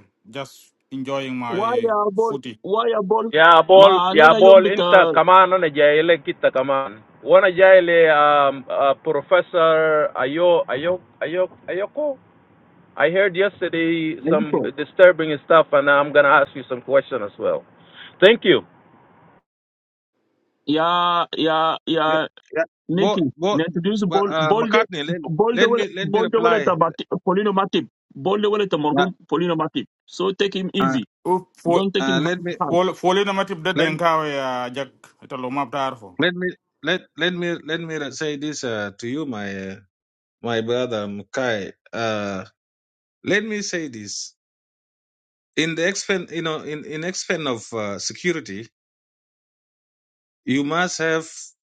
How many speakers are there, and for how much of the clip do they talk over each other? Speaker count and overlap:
4, about 14%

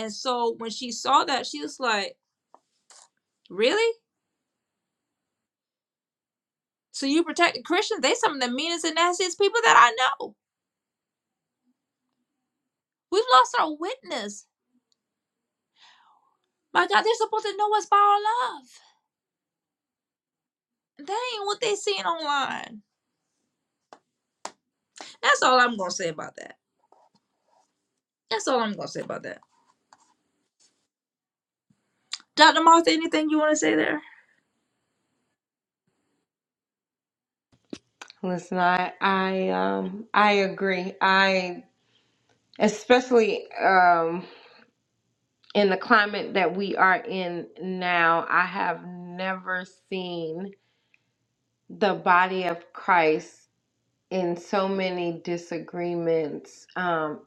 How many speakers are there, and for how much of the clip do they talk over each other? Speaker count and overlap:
2, no overlap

